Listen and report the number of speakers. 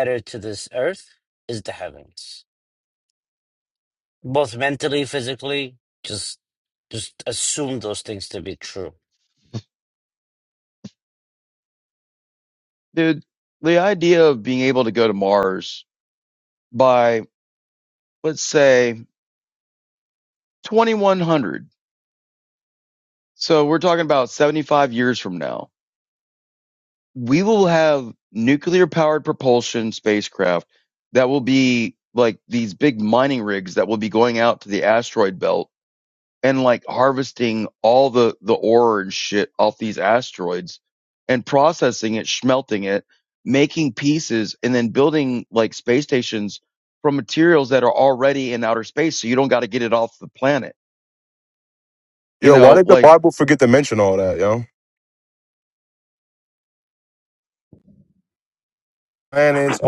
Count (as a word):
three